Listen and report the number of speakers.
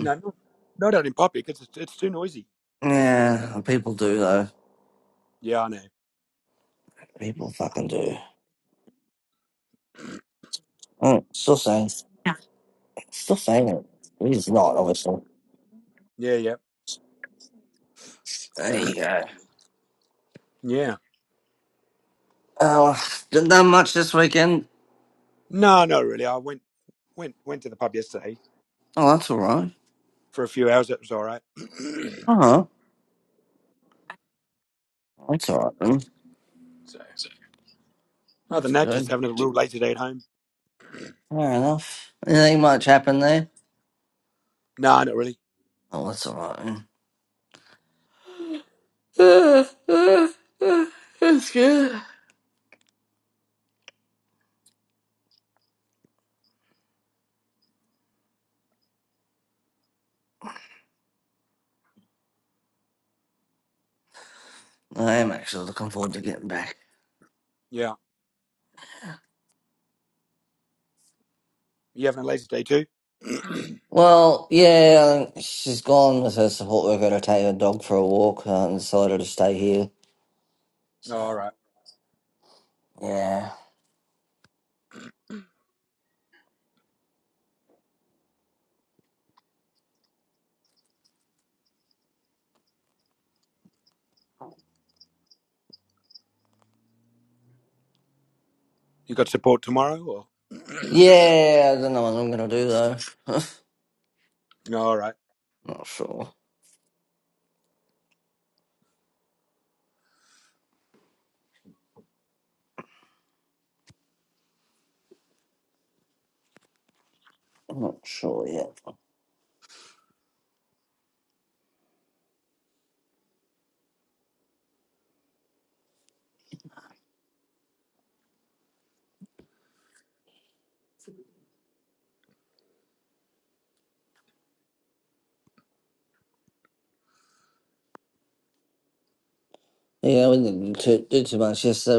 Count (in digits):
2